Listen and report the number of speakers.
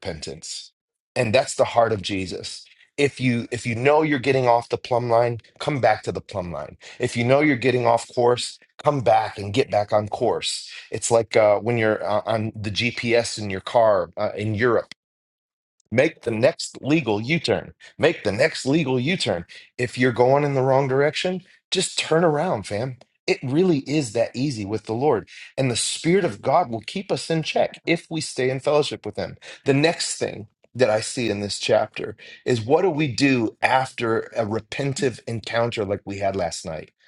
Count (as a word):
one